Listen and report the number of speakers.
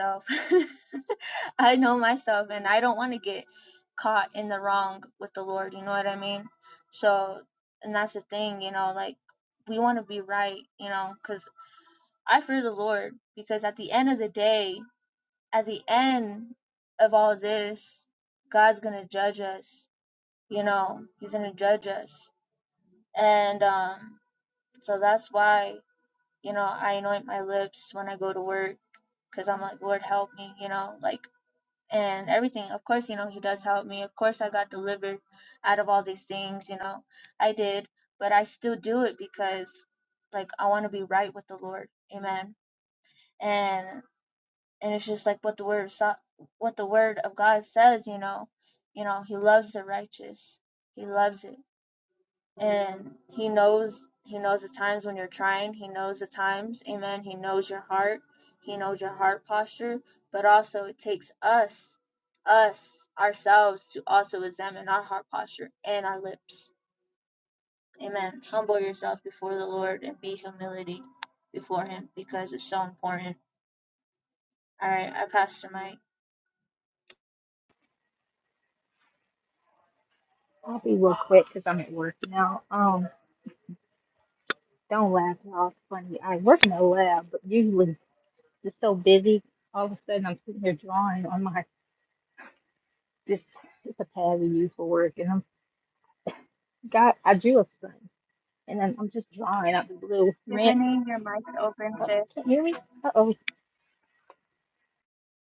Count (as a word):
two